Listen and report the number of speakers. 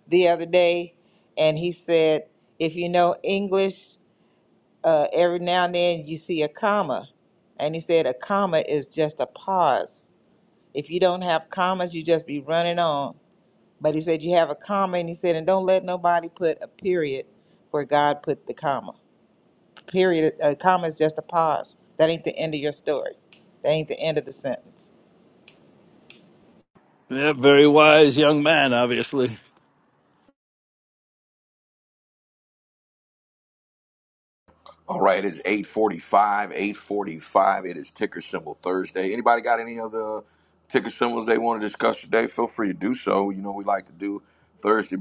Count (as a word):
three